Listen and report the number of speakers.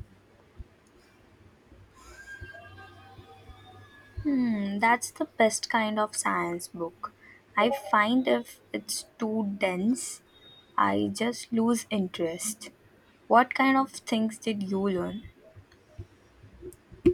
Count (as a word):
one